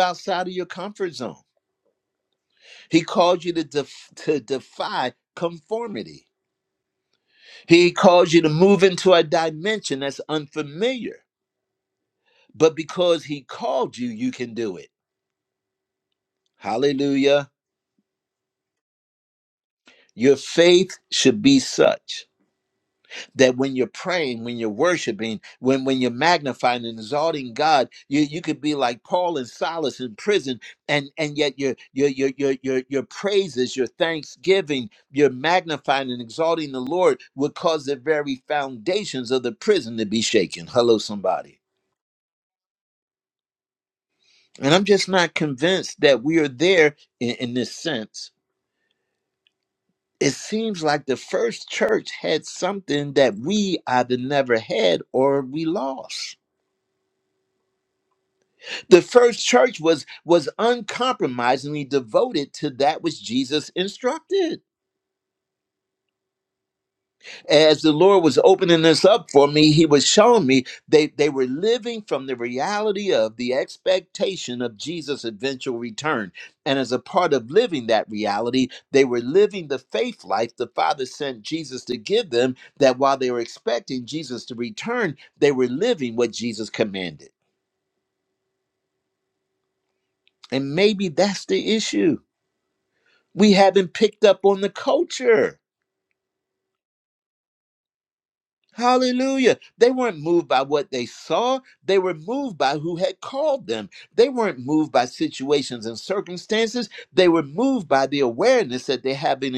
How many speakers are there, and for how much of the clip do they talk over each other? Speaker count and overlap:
1, no overlap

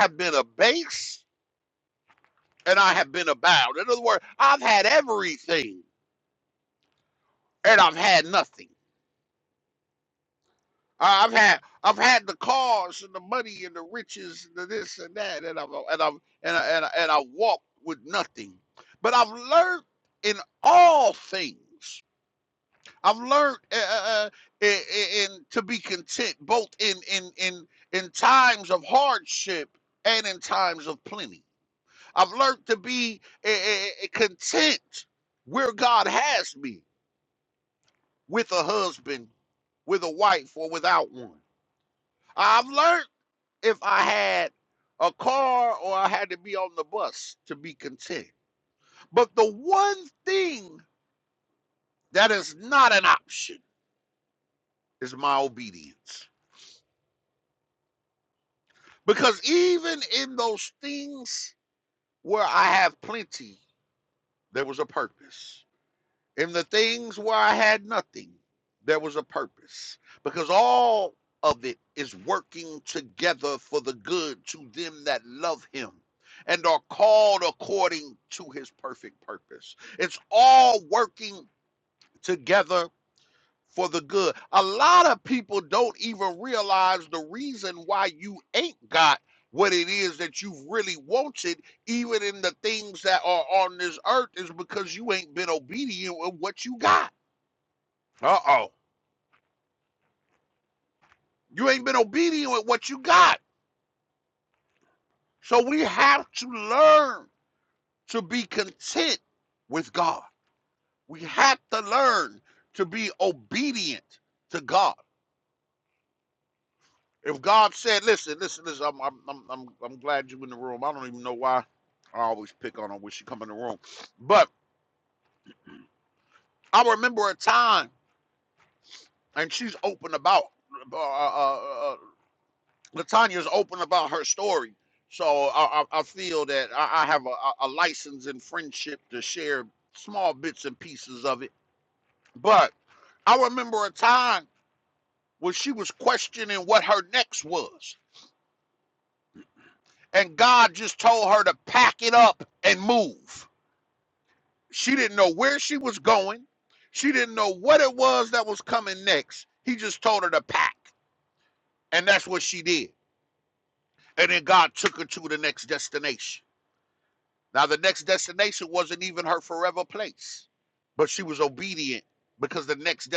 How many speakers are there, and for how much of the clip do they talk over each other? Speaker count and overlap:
1, no overlap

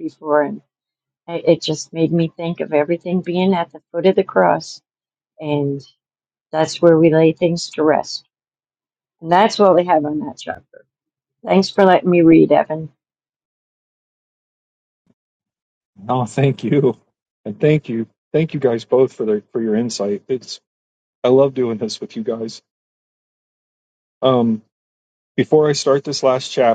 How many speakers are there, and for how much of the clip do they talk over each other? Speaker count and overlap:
2, no overlap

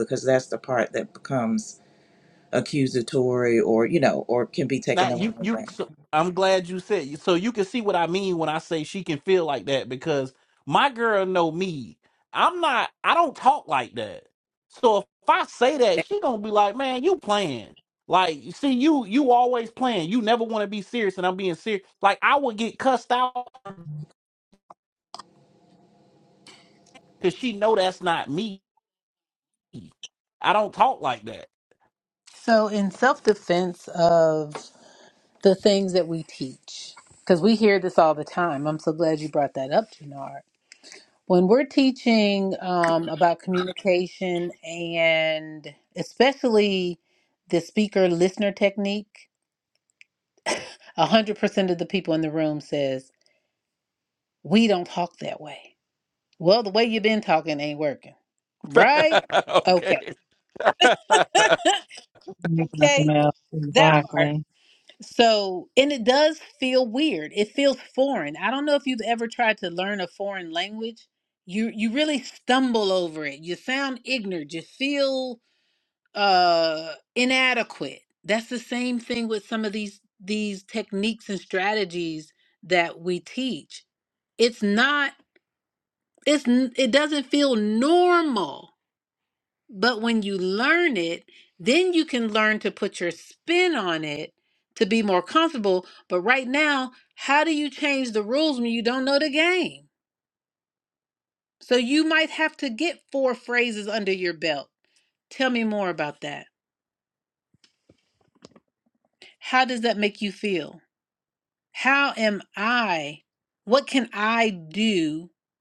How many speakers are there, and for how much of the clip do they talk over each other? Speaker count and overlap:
4, about 2%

